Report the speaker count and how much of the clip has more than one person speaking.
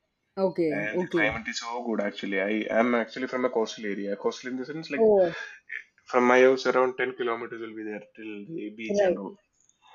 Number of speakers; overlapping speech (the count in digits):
2, about 10%